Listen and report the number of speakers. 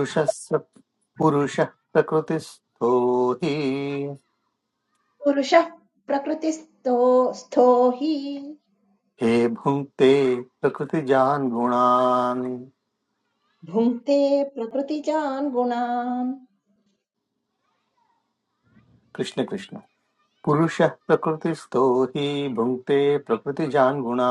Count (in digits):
2